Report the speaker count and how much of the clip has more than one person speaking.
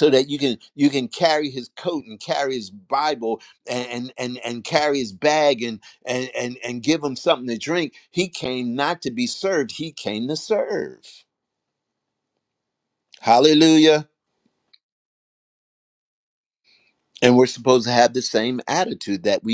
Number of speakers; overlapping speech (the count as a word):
one, no overlap